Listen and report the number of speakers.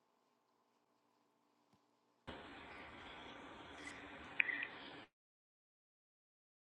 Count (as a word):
zero